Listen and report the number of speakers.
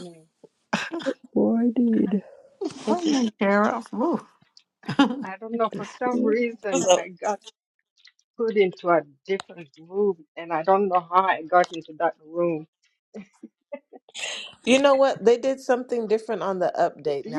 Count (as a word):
four